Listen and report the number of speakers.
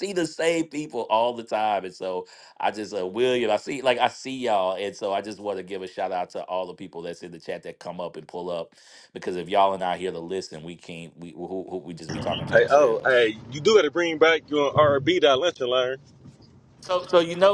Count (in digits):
2